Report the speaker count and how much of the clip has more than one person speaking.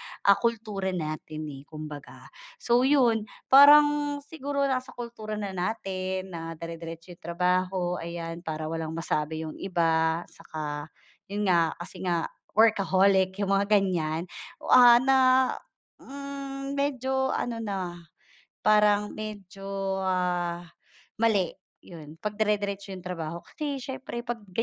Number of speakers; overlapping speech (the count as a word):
one, no overlap